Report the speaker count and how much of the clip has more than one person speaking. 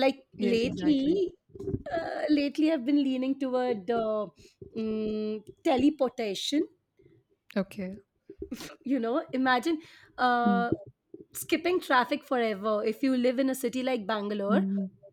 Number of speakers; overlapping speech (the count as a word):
two, about 8%